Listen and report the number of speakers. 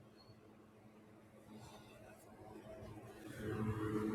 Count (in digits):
0